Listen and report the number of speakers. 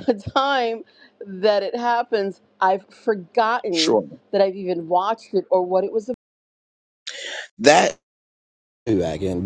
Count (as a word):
two